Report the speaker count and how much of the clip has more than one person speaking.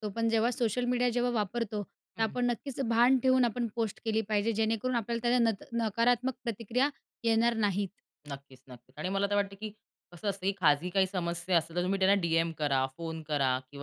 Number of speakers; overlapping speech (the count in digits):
2, about 1%